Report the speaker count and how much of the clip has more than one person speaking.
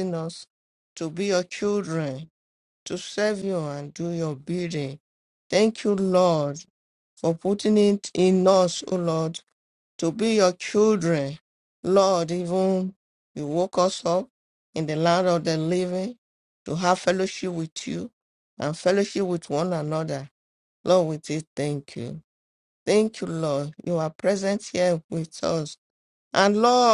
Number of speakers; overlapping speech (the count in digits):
1, no overlap